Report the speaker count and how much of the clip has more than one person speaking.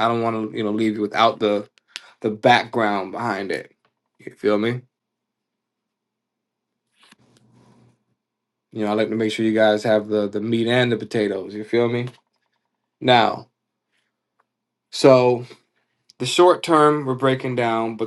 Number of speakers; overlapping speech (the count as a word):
one, no overlap